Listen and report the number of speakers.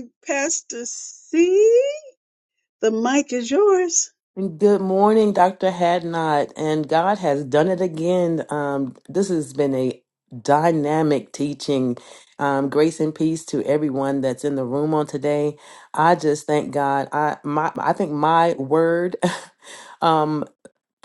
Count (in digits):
2